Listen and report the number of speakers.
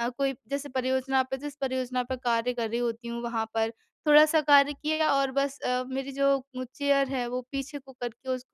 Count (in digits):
1